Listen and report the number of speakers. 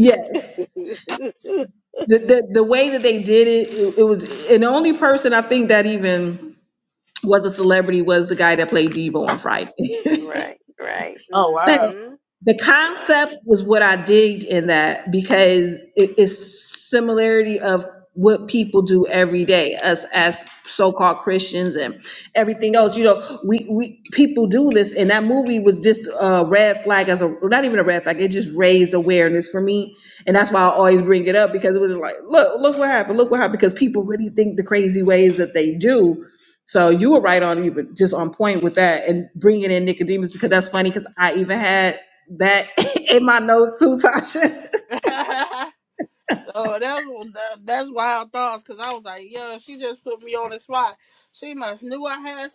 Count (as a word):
three